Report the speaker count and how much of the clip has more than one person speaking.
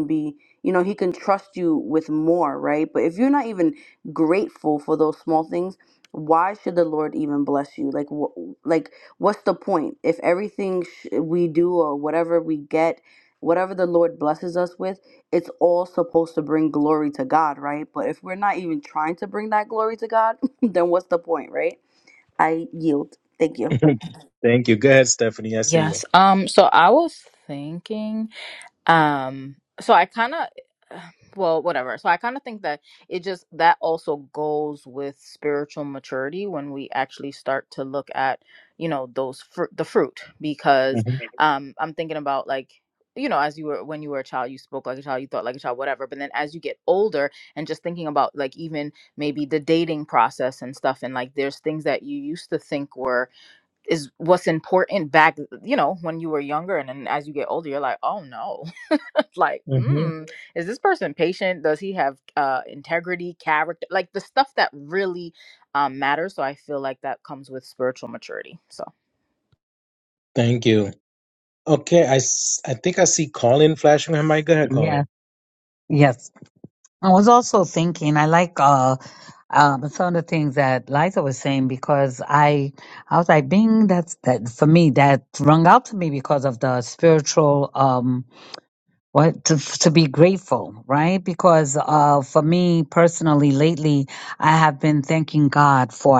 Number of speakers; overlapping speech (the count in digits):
4, about 1%